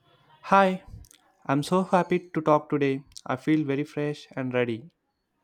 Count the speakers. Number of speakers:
1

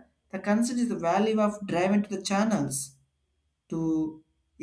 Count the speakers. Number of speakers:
1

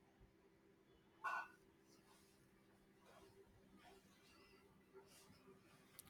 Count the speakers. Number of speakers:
0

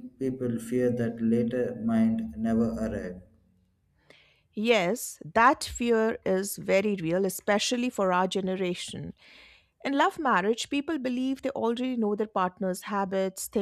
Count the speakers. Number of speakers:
2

